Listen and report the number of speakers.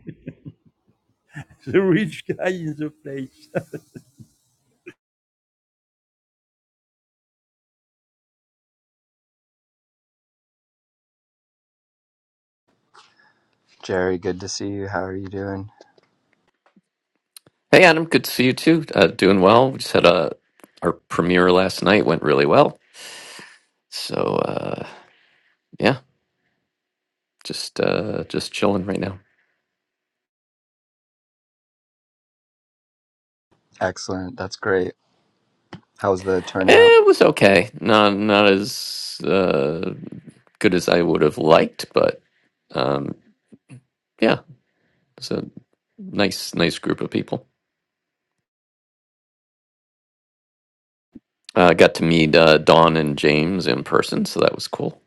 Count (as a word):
three